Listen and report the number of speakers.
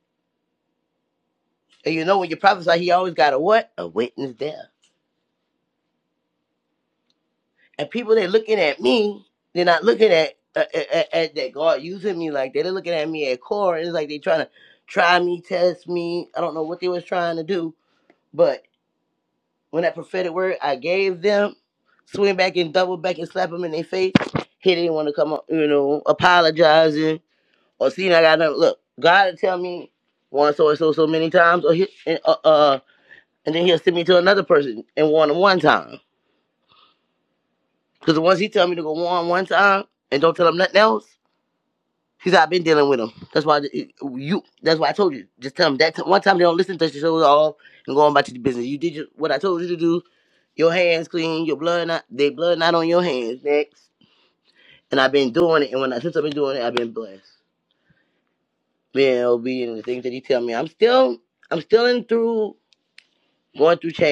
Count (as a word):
one